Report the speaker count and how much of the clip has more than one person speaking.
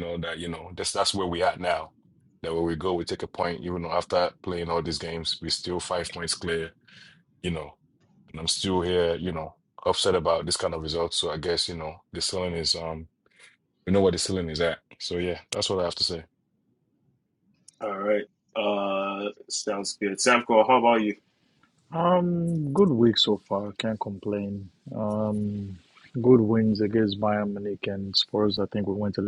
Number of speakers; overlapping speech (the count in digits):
3, no overlap